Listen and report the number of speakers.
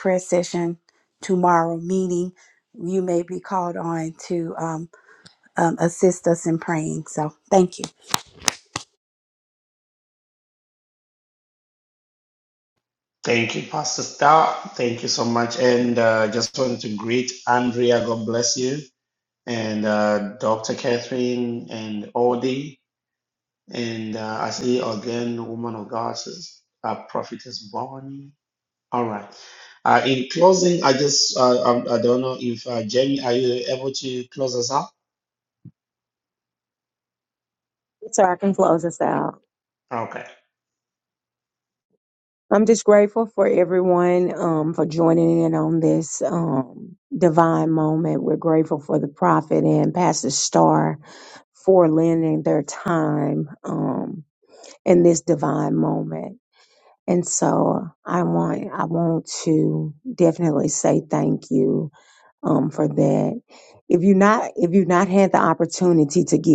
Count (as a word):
three